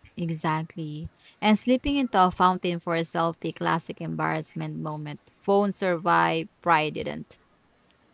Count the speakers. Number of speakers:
1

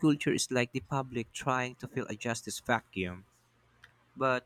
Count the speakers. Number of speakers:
1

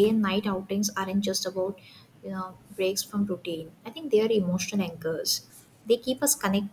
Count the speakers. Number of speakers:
1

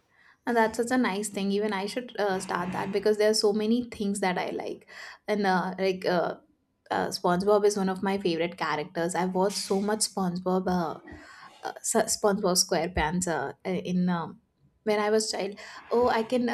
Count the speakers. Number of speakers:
1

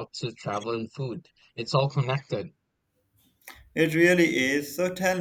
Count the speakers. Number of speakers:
2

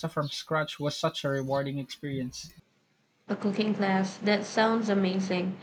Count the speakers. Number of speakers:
2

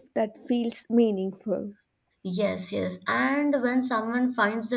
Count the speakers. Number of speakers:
2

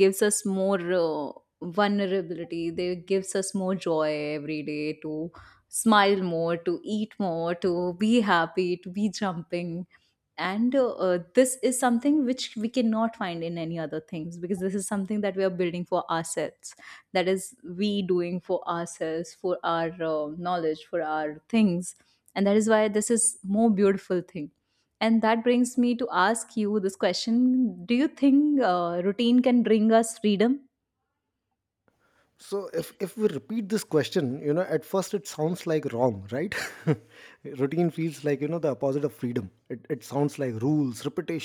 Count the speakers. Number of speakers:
2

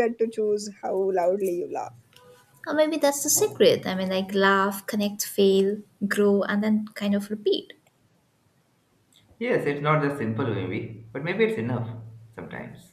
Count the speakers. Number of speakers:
3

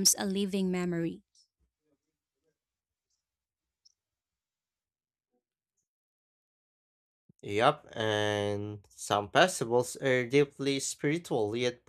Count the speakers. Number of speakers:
2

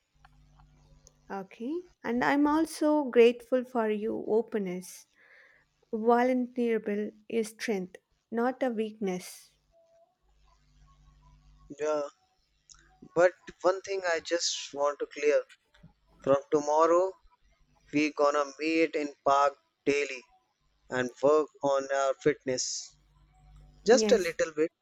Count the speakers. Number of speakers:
2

